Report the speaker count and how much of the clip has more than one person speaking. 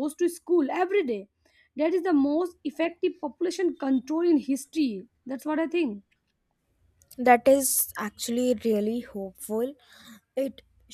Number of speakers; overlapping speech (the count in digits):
2, no overlap